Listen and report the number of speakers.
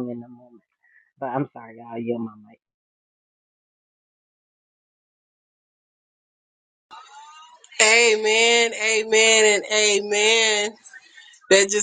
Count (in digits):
2